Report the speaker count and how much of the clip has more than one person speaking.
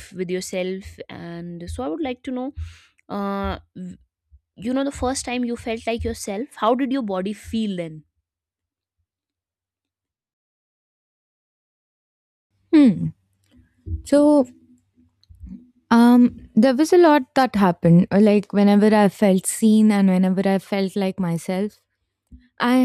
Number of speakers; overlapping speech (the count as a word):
two, no overlap